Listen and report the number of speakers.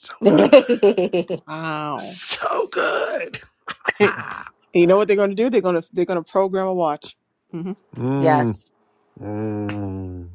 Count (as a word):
three